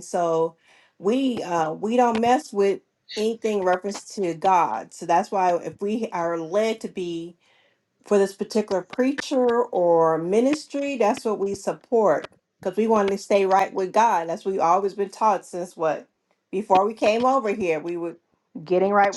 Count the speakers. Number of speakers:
1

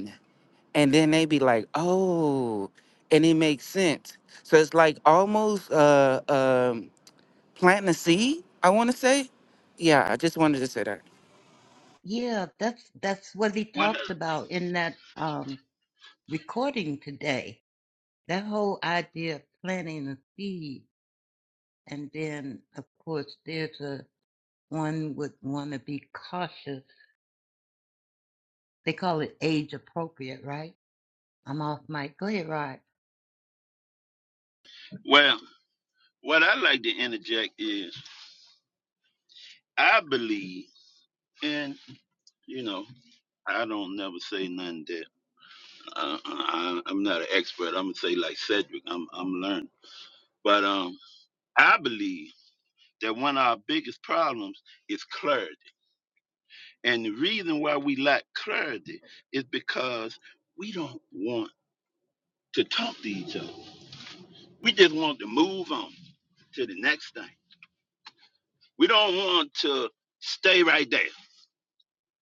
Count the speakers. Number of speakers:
3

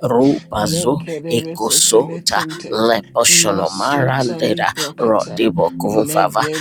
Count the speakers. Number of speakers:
2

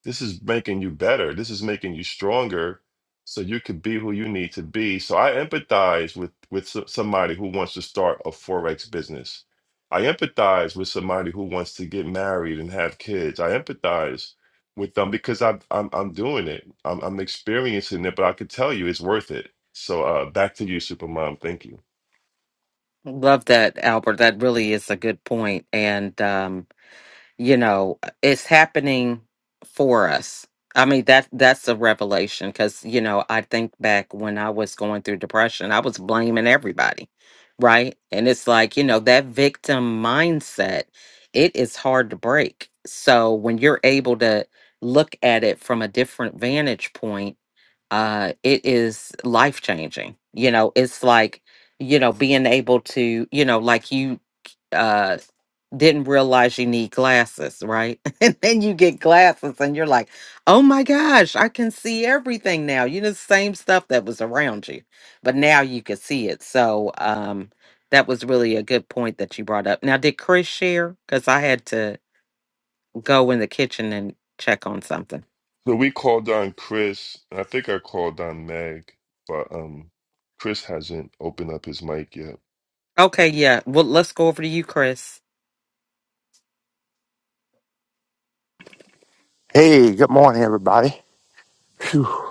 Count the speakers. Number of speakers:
3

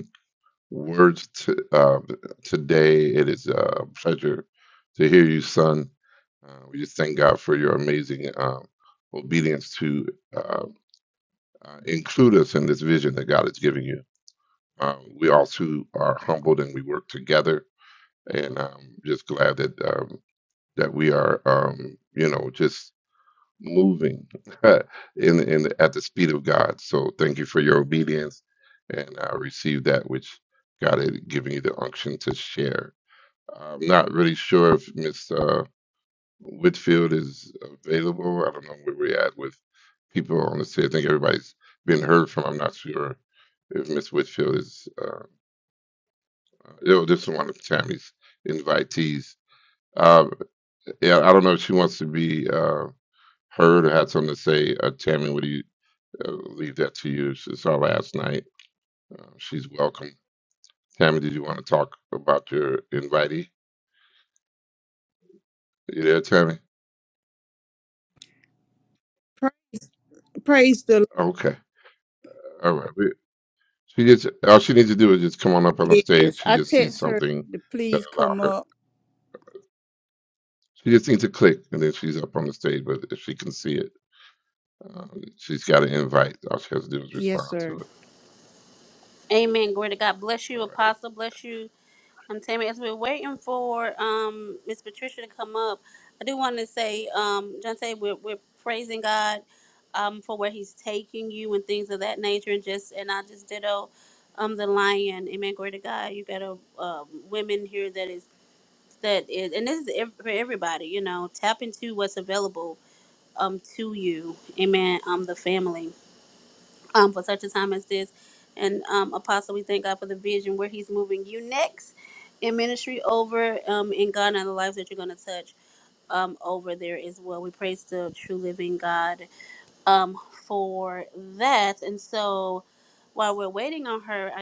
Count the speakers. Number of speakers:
3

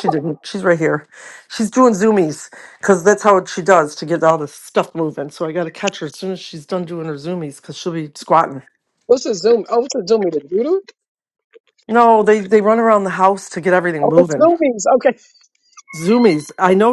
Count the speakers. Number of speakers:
2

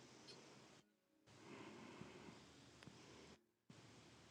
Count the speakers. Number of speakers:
0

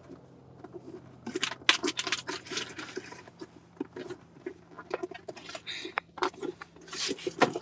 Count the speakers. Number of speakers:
0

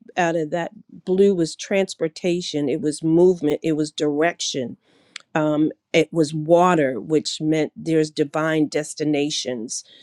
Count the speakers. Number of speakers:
1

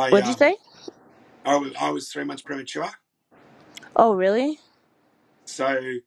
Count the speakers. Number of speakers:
2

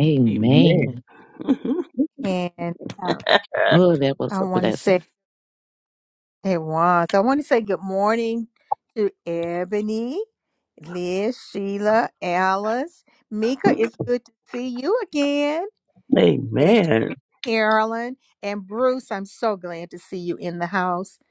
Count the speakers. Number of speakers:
3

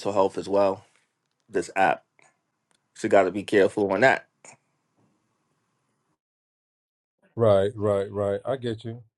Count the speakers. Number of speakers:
2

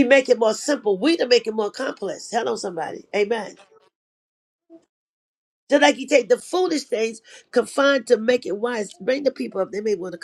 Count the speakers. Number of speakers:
1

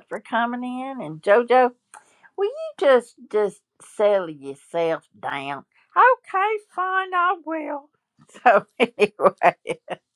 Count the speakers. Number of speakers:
1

